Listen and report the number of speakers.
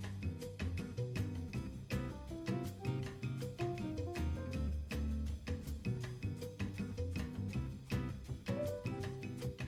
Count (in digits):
0